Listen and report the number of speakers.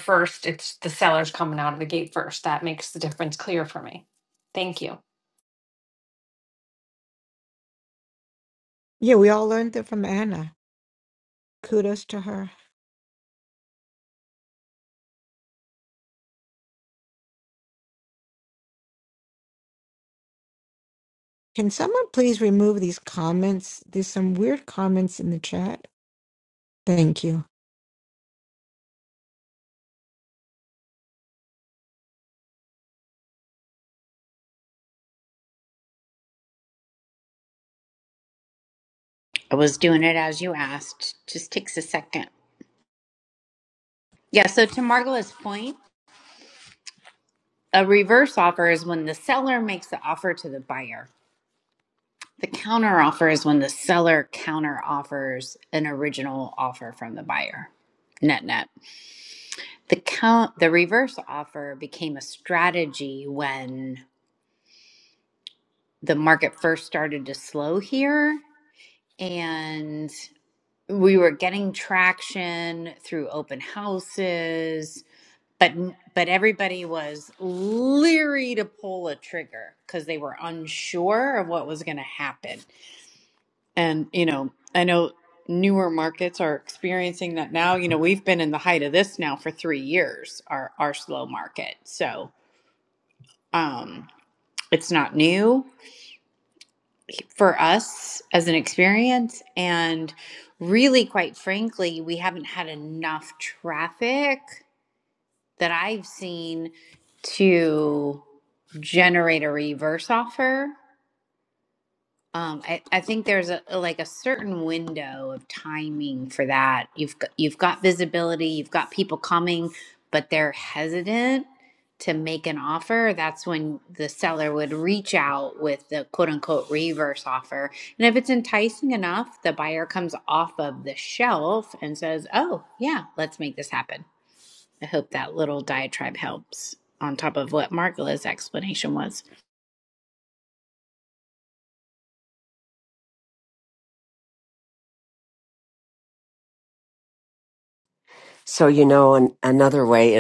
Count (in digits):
4